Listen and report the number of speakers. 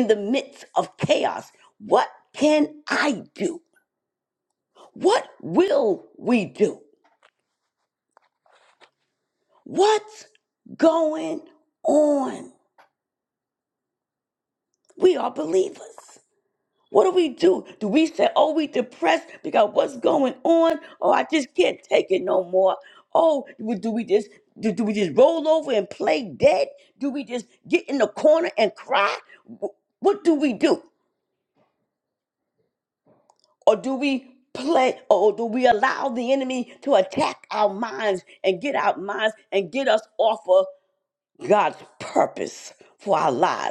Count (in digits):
1